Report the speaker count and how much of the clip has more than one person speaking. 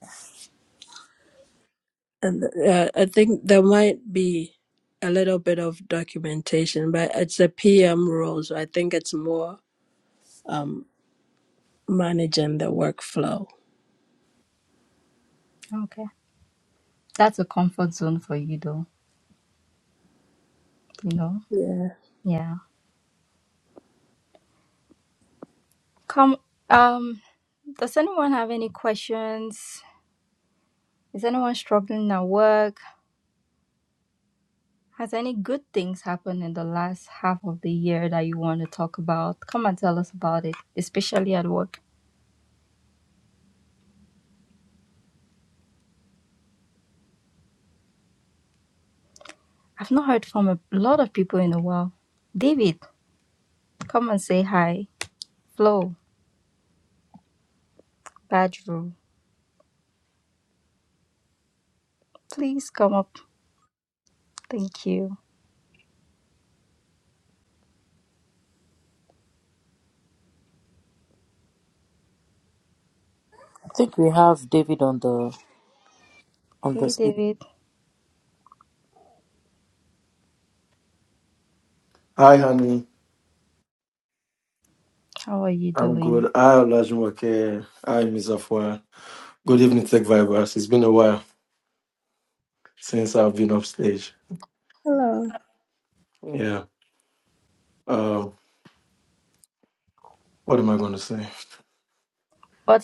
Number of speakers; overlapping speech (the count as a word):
four, about 1%